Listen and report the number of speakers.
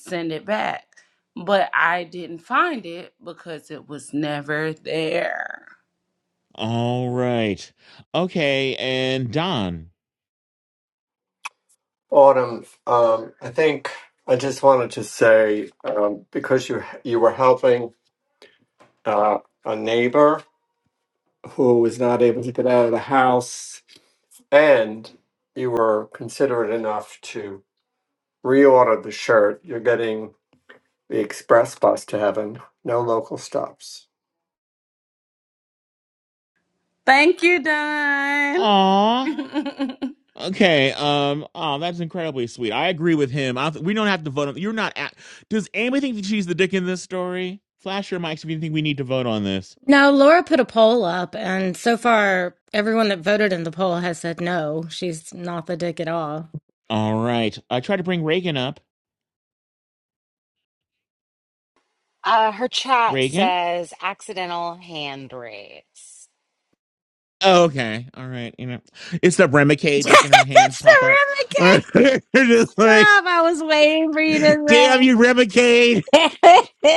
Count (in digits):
5